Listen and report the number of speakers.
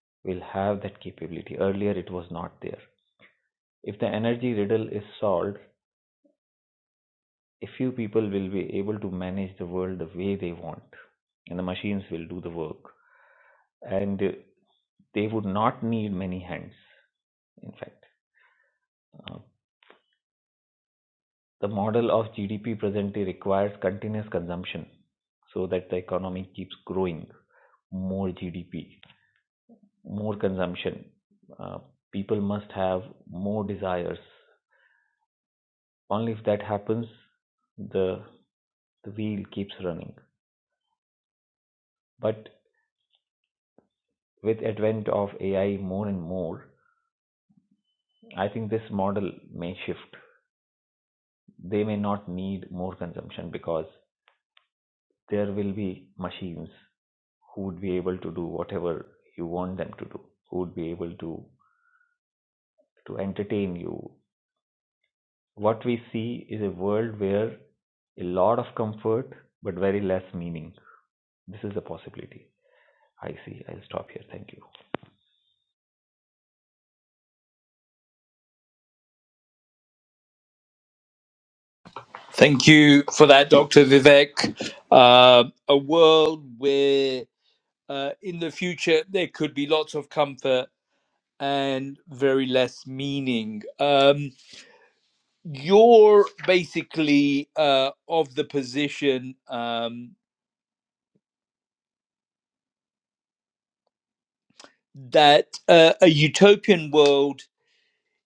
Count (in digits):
2